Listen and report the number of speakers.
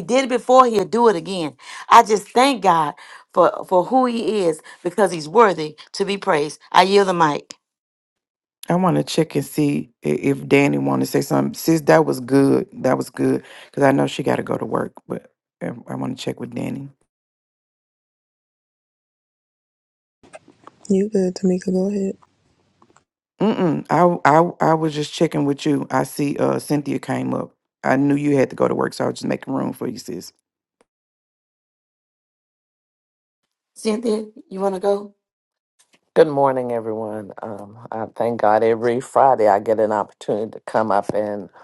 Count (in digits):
4